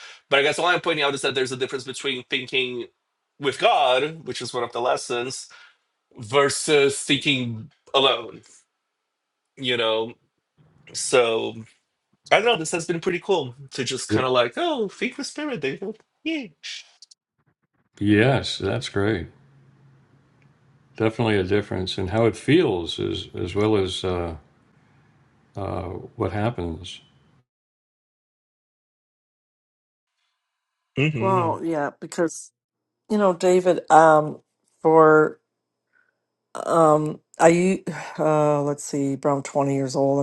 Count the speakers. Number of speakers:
3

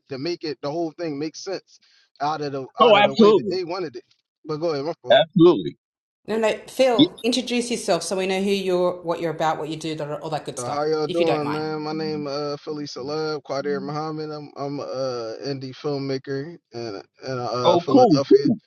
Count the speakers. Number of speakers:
3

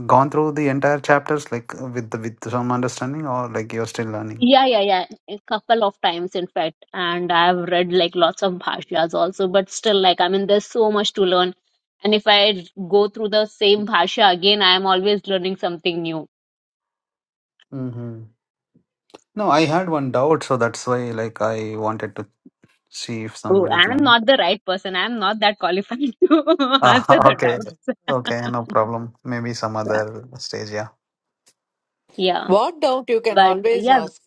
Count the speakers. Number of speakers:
3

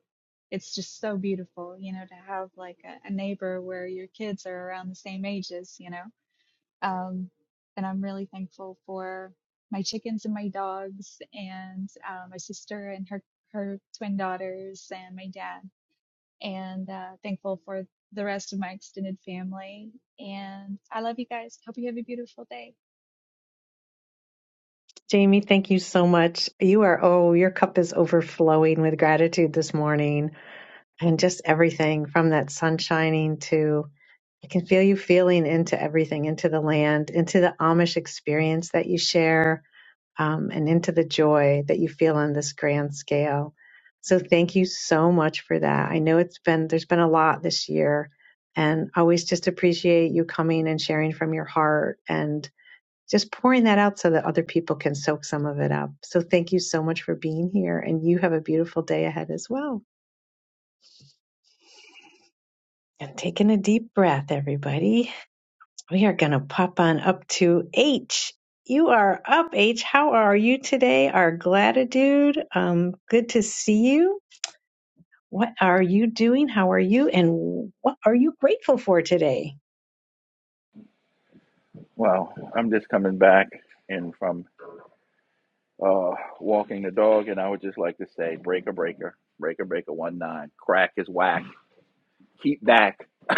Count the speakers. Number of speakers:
3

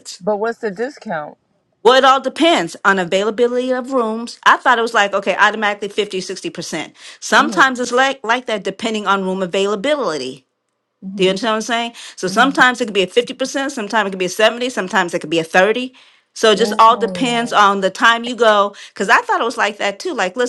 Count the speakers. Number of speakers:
2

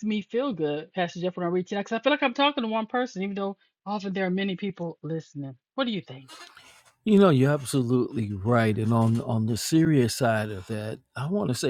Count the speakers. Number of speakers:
2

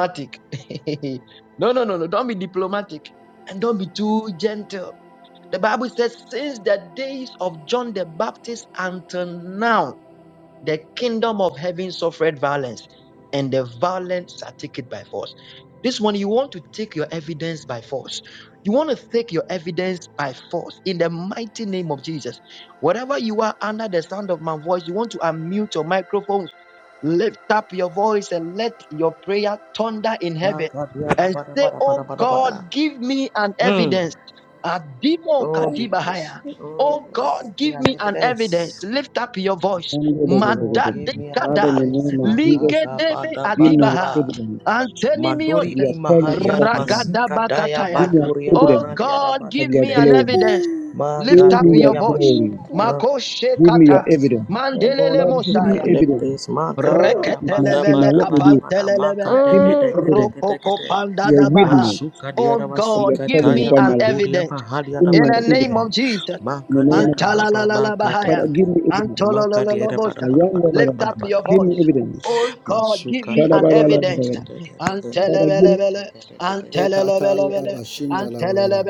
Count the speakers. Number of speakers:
3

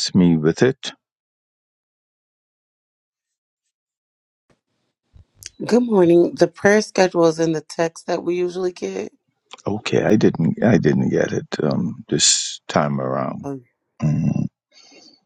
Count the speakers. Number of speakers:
2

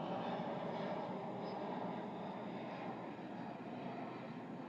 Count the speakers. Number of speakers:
0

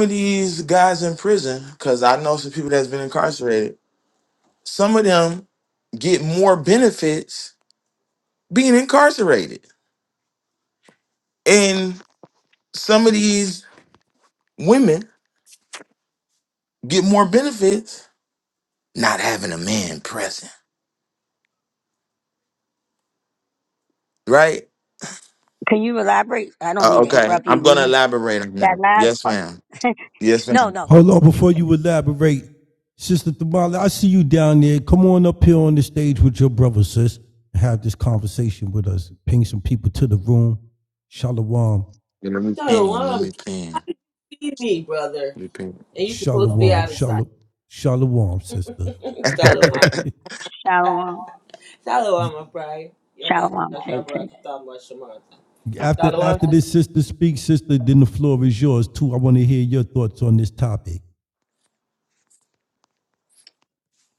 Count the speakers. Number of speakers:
4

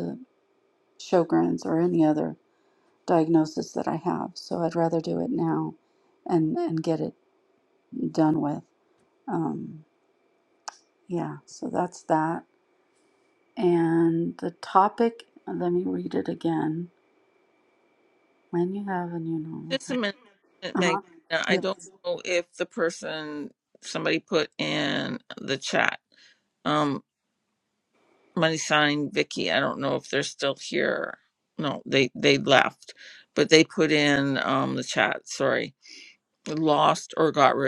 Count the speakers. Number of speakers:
2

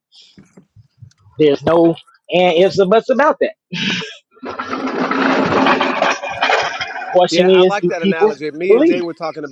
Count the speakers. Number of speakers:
2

